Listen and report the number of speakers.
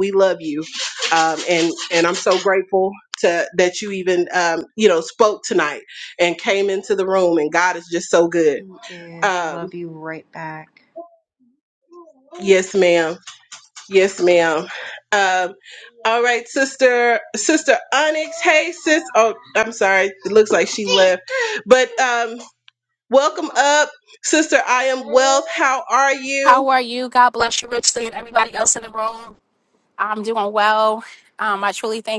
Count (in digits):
3